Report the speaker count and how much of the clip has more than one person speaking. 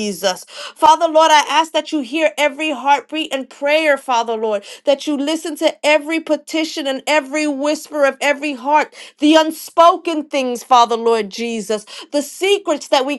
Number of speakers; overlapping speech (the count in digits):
1, no overlap